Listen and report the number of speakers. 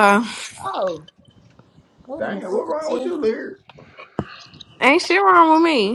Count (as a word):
three